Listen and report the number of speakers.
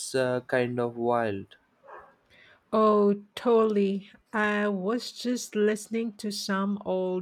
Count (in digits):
2